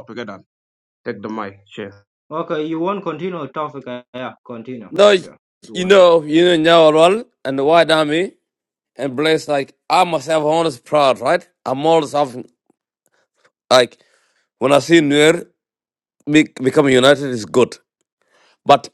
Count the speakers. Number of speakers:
3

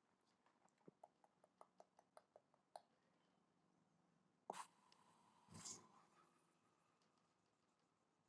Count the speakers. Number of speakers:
0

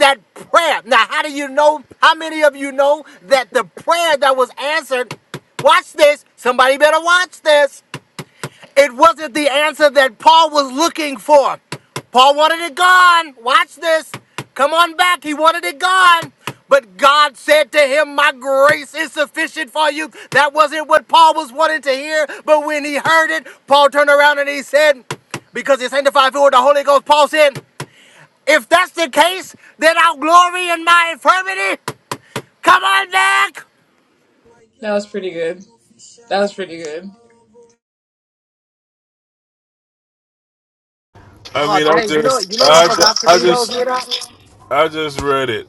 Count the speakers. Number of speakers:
3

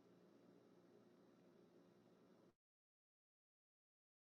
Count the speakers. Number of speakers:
0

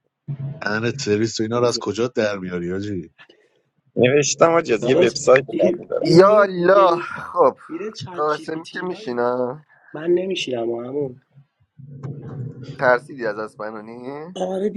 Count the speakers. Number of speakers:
4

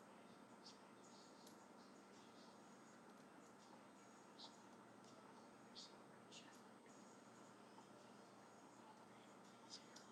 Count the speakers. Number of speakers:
0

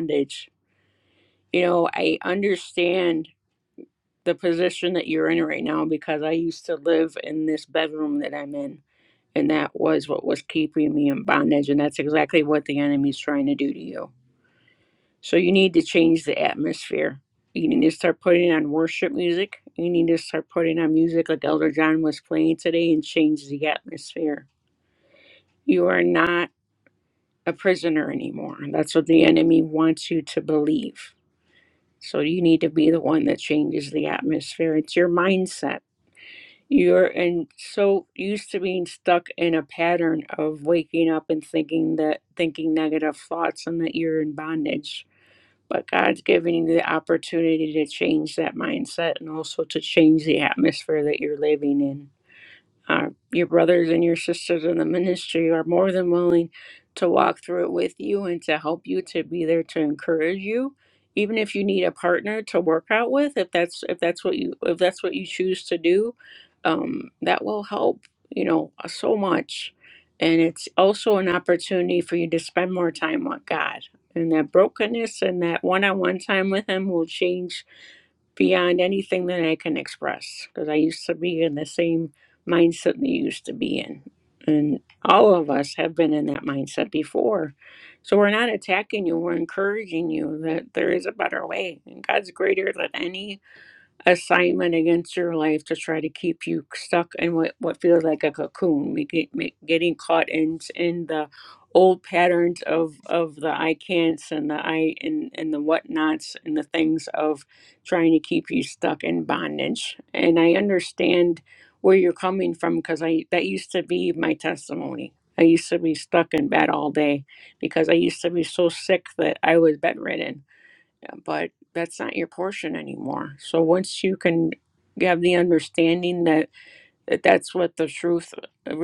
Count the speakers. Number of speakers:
1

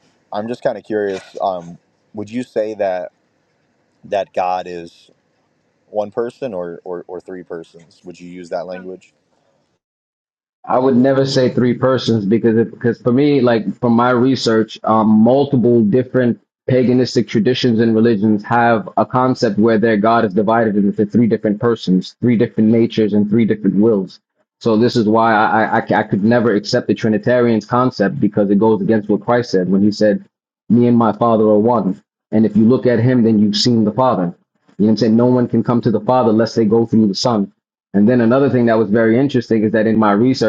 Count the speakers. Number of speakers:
2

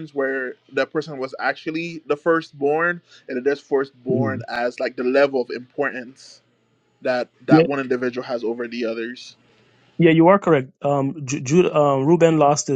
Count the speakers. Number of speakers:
2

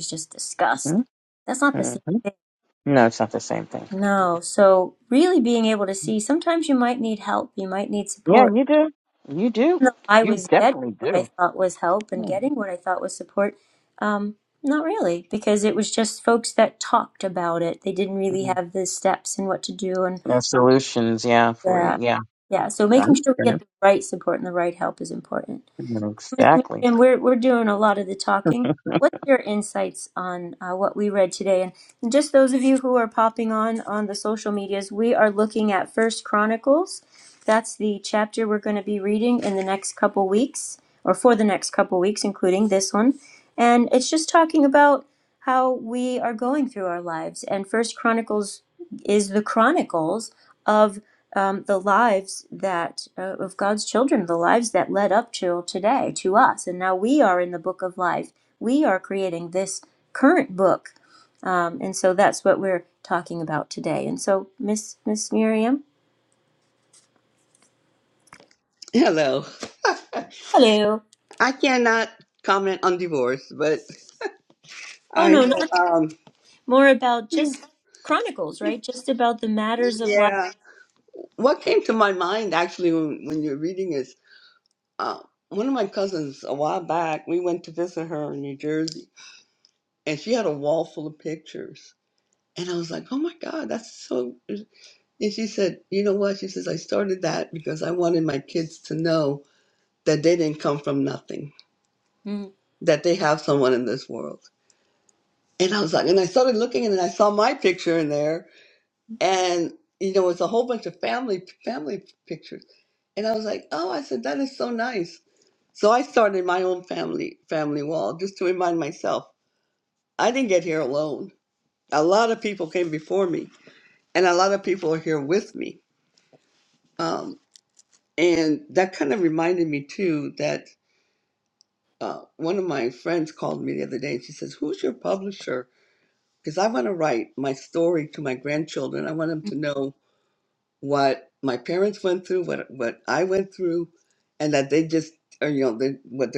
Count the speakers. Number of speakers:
3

